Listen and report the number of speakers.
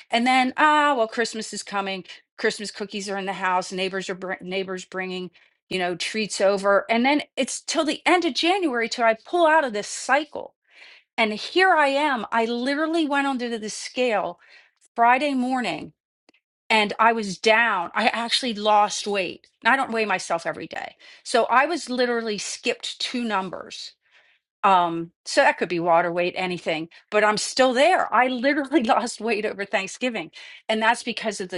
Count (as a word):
one